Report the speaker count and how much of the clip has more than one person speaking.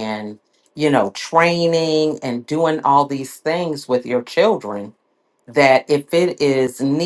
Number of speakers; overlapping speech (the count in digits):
1, no overlap